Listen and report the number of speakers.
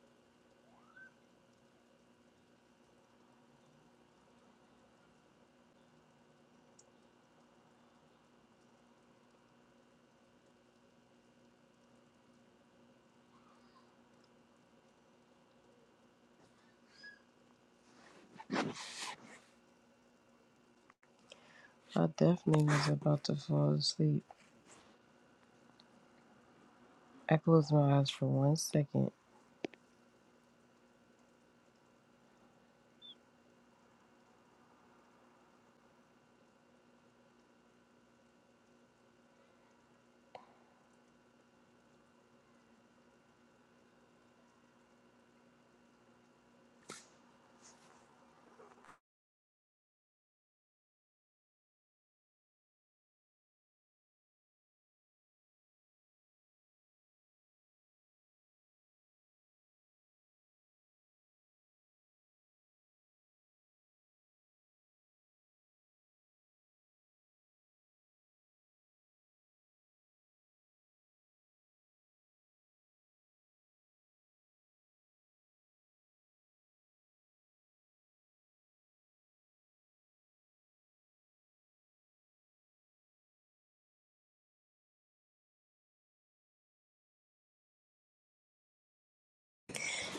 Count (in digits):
1